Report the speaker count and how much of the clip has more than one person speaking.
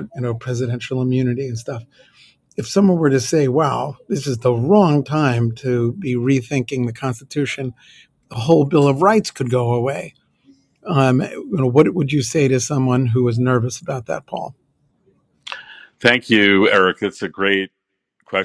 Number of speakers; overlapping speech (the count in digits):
2, no overlap